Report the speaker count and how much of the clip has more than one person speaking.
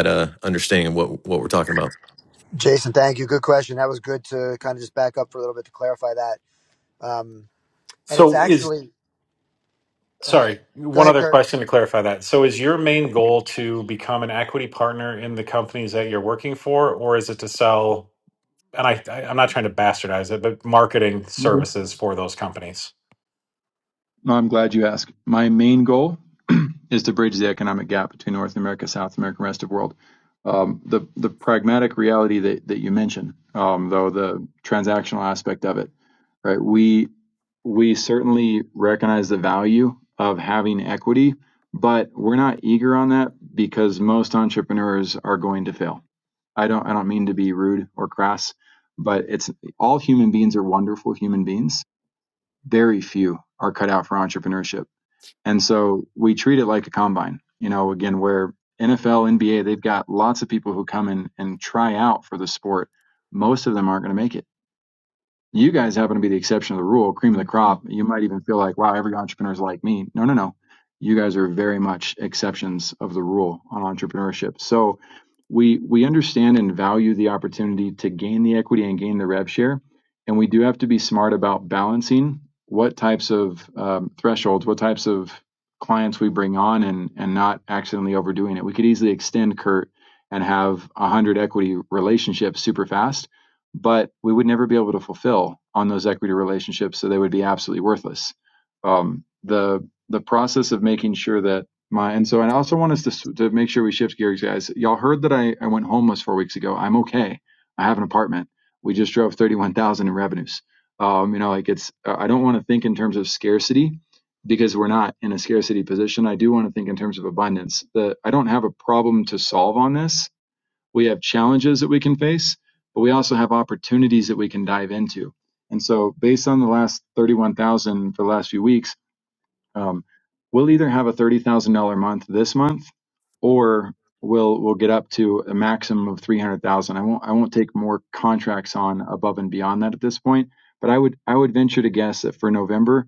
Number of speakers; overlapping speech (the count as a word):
four, about 1%